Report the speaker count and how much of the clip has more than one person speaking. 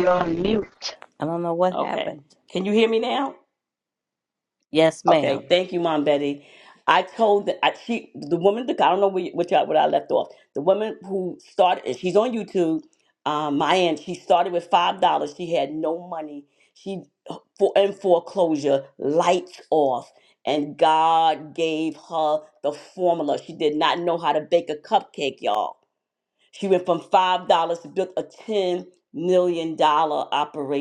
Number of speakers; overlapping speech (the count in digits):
2, about 2%